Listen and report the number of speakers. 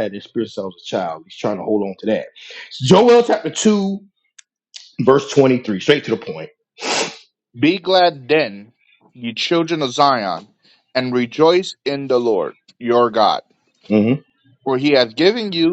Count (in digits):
2